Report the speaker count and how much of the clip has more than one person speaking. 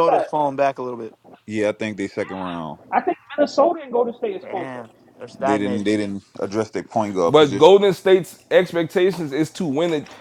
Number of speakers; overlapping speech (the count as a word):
four, about 16%